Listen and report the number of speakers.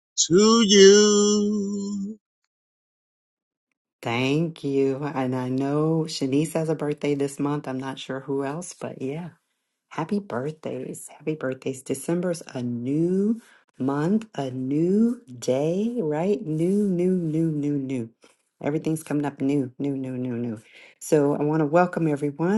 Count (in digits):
2